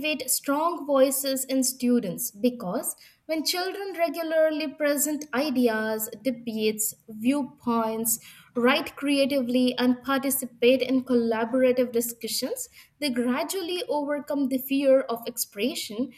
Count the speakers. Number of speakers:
1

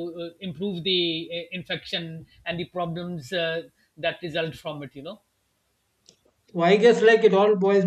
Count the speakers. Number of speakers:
2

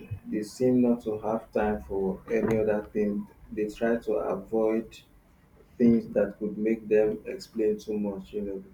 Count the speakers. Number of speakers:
1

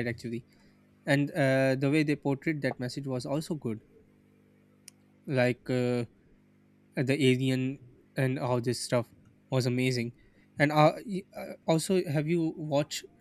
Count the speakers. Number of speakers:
1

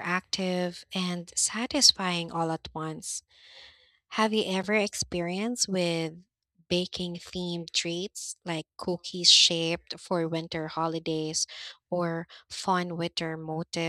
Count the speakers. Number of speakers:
1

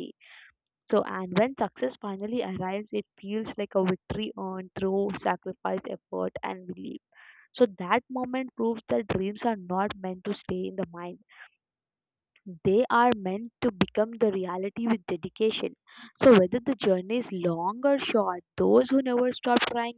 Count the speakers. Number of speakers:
1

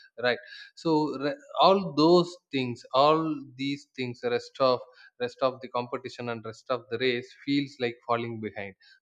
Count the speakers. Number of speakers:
1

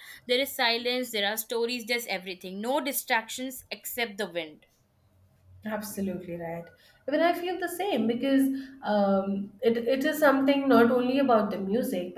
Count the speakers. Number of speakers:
2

